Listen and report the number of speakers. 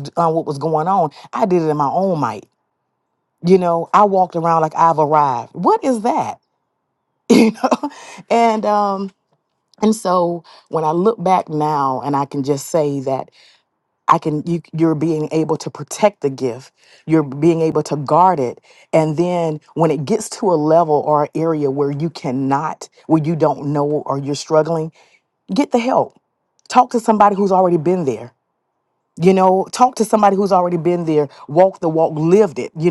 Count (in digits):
1